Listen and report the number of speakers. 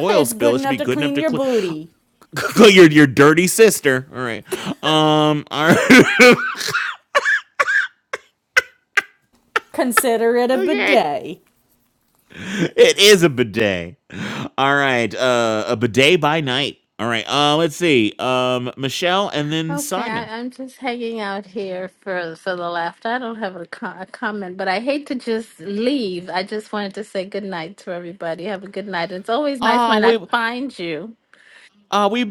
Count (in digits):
3